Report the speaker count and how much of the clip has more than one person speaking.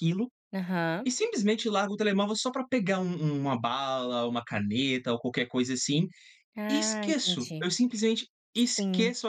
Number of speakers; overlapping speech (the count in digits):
2, about 14%